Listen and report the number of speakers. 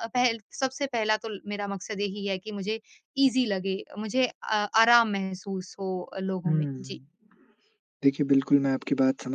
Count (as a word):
two